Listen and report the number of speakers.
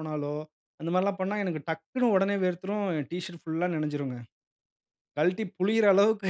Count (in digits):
1